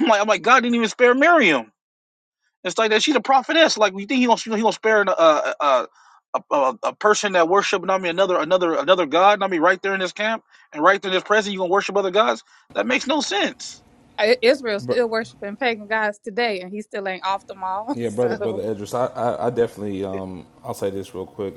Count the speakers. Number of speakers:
3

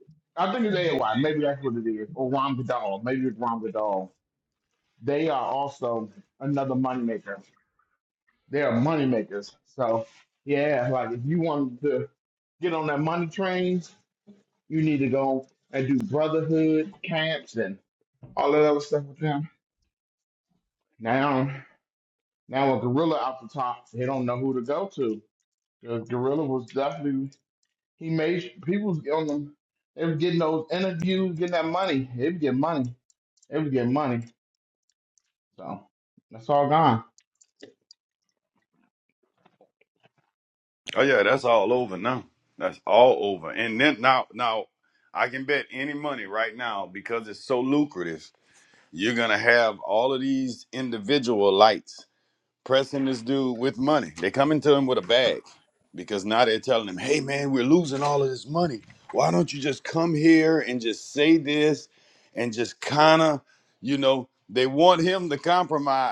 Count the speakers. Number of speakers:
2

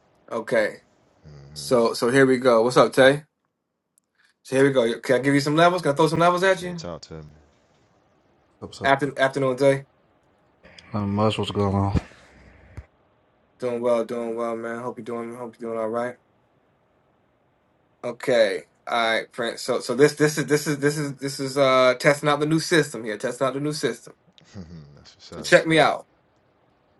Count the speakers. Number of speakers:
3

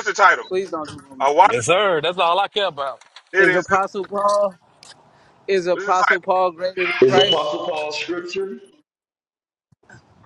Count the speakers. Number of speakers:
4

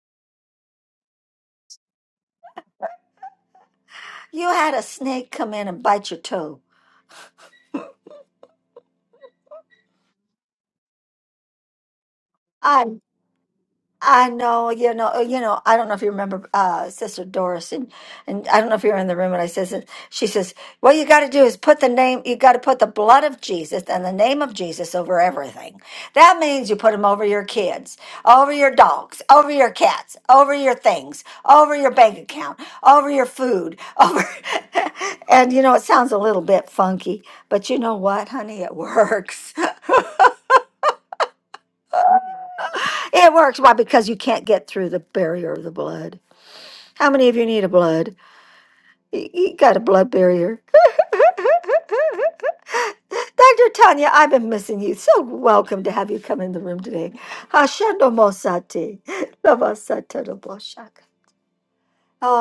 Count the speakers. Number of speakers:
1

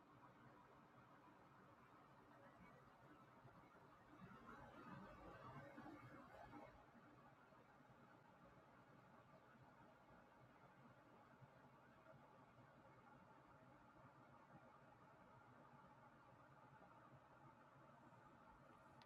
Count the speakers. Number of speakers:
0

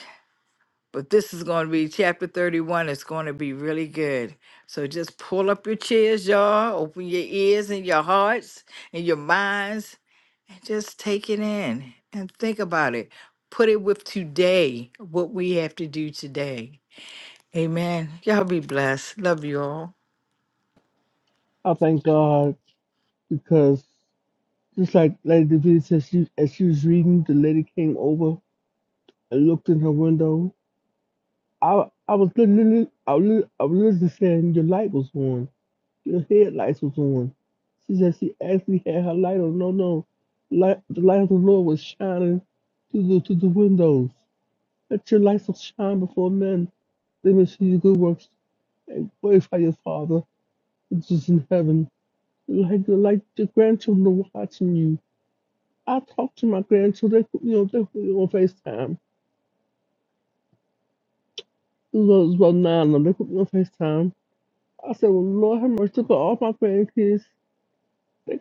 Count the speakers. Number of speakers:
2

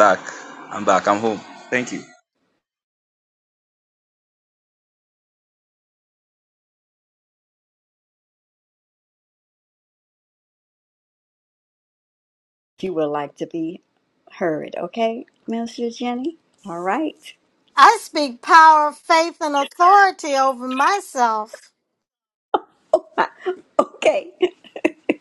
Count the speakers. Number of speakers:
3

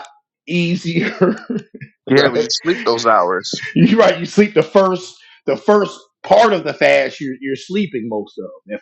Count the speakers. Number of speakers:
2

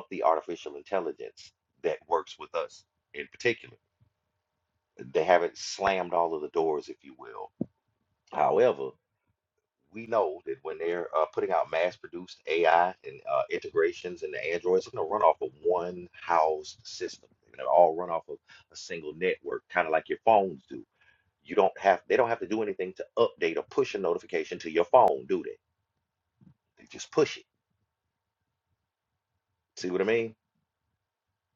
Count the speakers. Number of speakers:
1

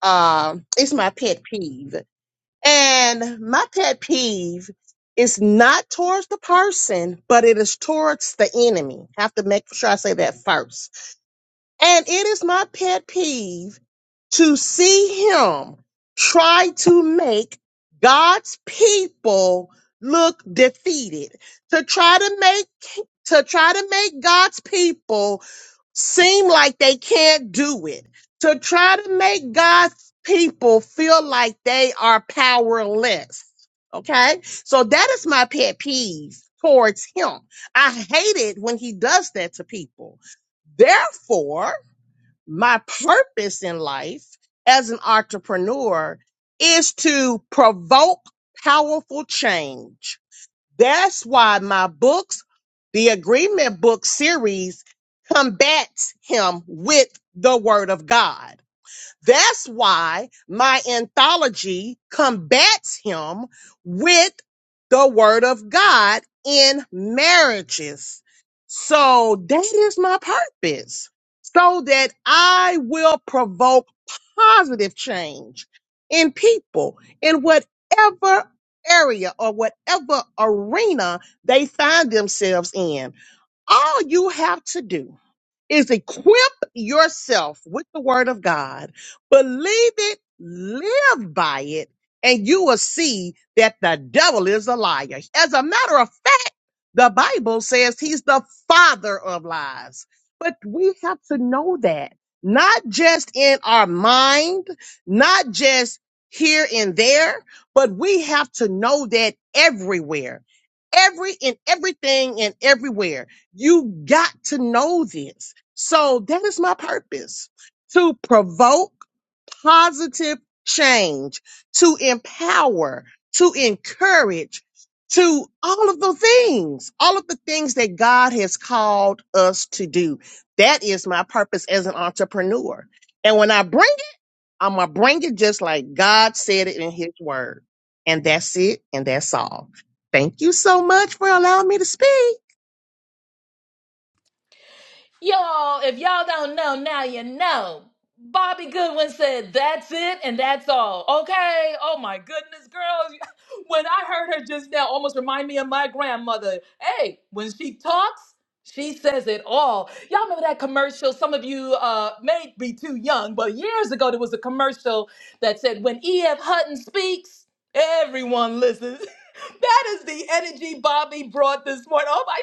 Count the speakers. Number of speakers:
2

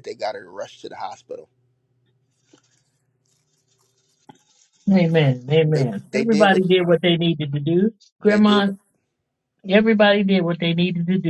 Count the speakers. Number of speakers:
2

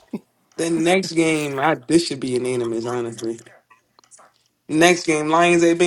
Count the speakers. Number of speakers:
1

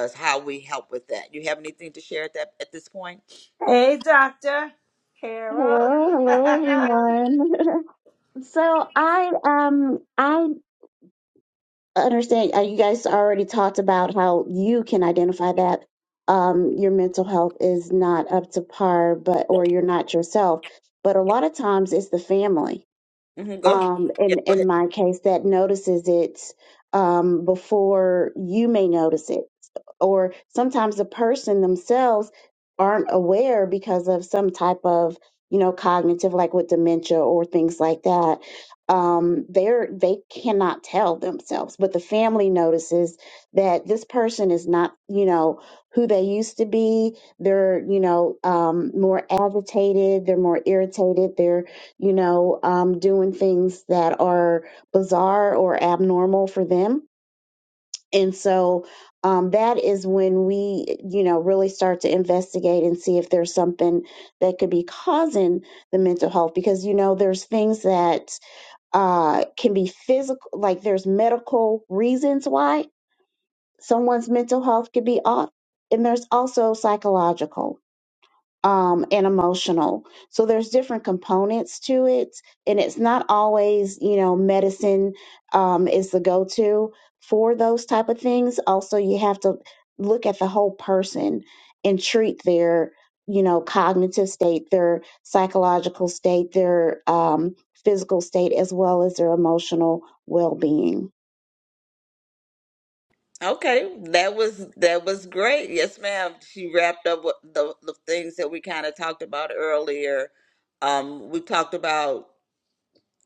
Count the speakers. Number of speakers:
3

